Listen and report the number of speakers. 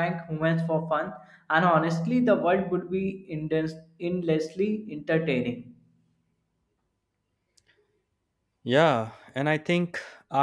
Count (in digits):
2